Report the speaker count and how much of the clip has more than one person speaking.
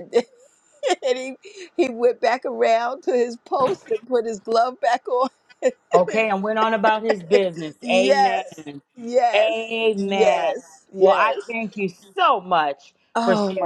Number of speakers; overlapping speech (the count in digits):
2, about 16%